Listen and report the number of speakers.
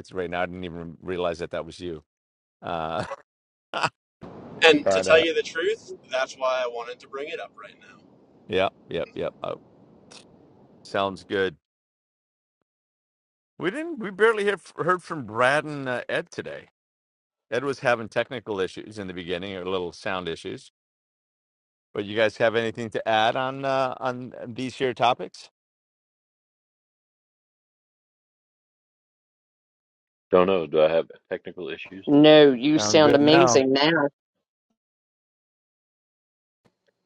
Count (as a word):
four